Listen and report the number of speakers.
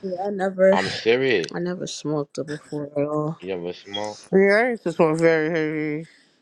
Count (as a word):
three